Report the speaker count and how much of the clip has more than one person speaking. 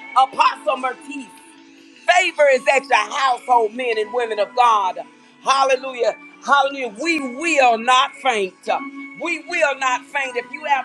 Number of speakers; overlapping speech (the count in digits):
1, no overlap